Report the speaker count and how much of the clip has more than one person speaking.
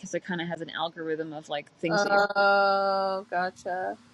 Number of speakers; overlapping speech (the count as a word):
two, about 7%